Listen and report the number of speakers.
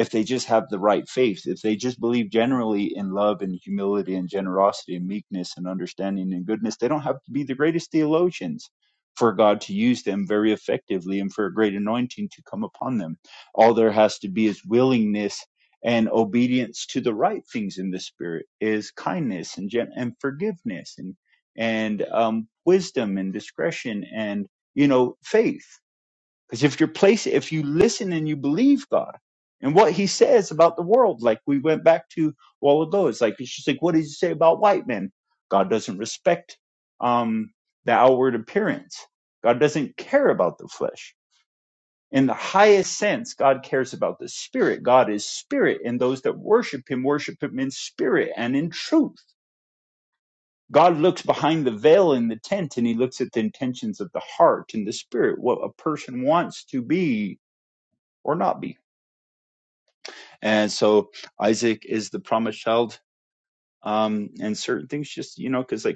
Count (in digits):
1